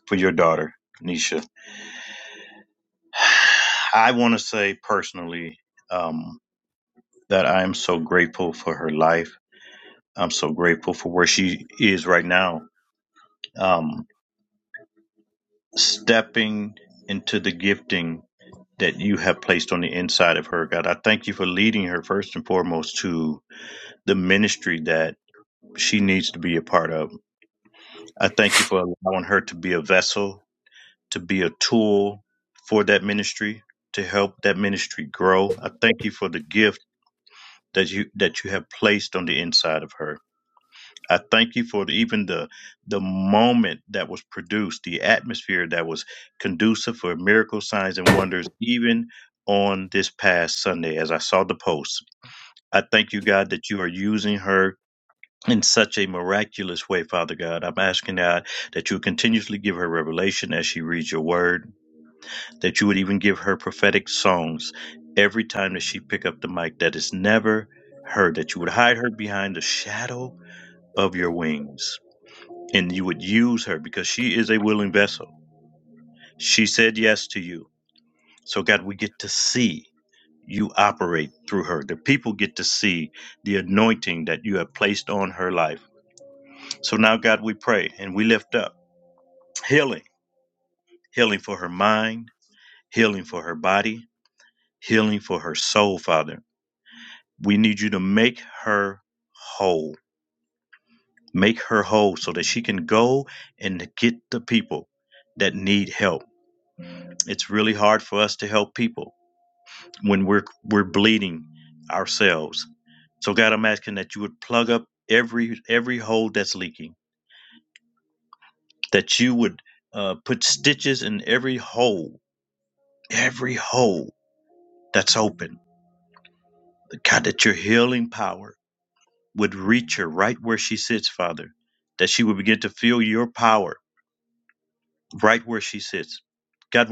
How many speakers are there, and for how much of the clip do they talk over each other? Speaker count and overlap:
1, no overlap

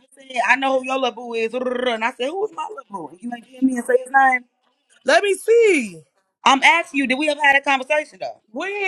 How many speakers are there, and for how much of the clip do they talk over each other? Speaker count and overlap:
2, no overlap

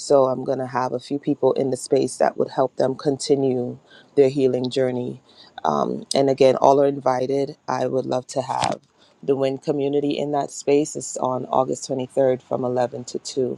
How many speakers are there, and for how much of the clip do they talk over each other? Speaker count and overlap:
1, no overlap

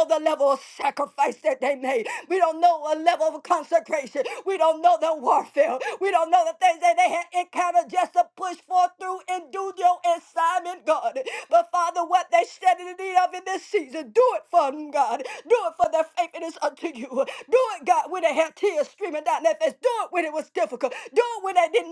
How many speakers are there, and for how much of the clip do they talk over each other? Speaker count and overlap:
1, no overlap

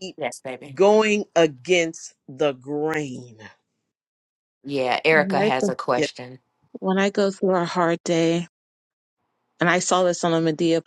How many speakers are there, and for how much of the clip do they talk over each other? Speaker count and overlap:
3, about 6%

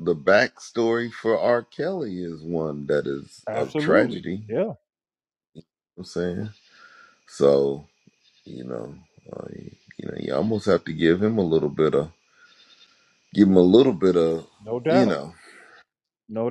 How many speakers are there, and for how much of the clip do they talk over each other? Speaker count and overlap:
2, about 7%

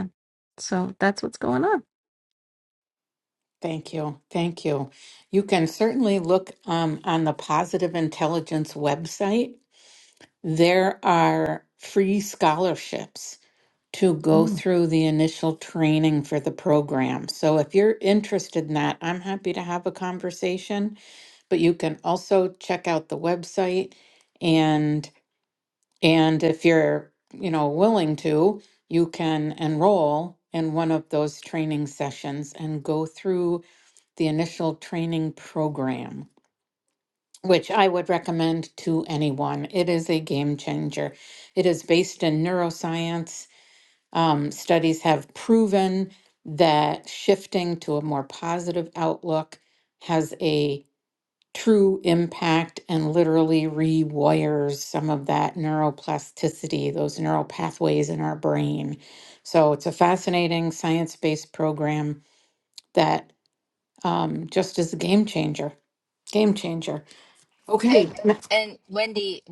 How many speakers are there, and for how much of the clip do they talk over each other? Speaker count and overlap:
3, about 1%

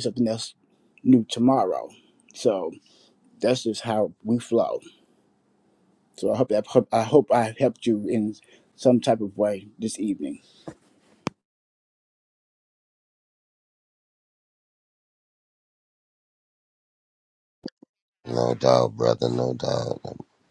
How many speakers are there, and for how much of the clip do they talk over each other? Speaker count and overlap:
2, no overlap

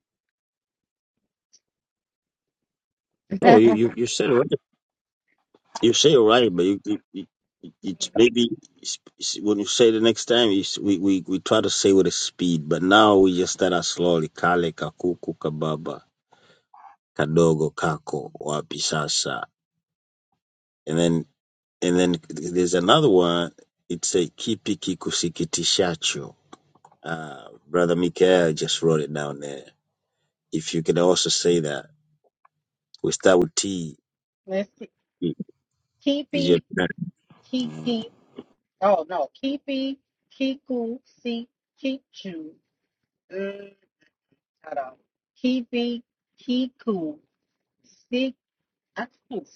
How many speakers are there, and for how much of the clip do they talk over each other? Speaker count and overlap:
2, about 2%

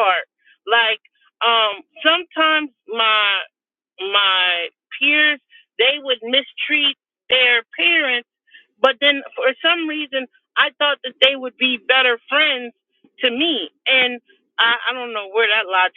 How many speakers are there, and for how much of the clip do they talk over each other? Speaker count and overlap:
1, no overlap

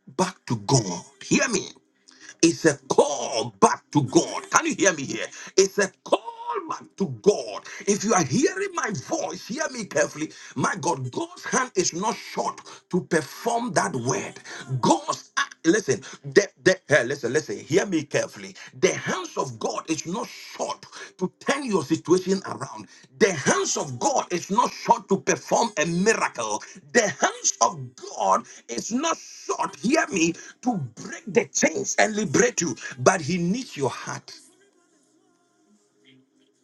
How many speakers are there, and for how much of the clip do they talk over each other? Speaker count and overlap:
1, no overlap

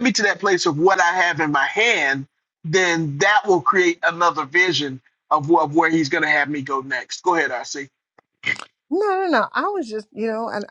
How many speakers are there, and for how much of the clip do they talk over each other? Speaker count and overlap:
2, no overlap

